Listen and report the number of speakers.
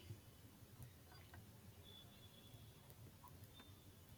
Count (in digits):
0